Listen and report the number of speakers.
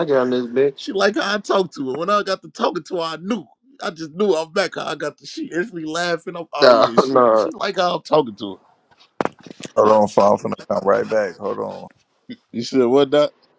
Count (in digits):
3